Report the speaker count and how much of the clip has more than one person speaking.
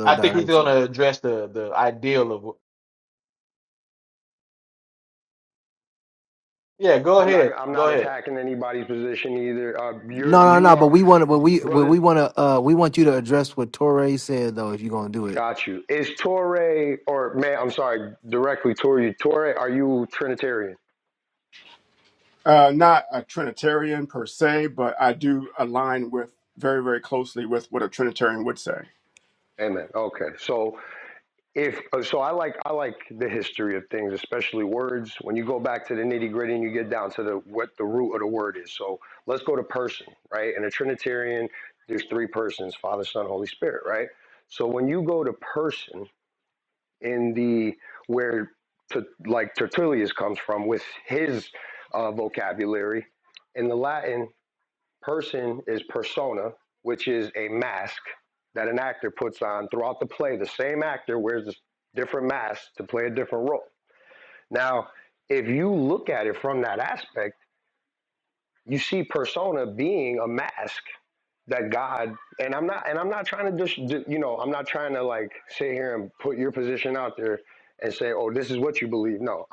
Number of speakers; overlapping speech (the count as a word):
four, about 3%